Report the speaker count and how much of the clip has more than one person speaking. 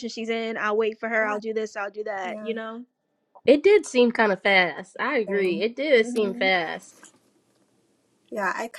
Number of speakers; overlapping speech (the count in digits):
3, about 16%